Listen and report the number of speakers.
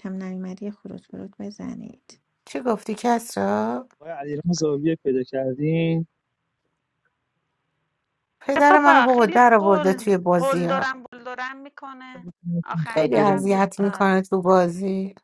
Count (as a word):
four